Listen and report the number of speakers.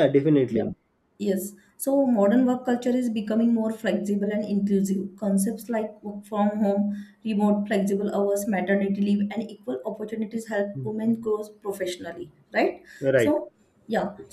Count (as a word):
two